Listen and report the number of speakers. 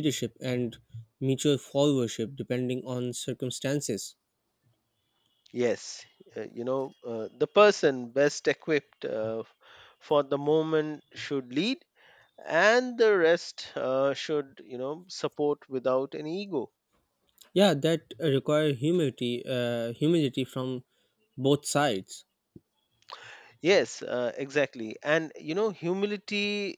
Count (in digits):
2